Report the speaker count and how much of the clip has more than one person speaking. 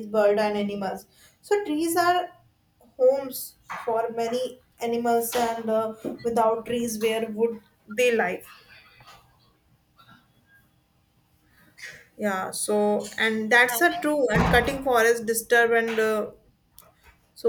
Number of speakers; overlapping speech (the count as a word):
one, no overlap